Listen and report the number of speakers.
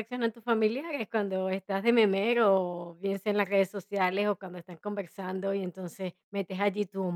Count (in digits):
1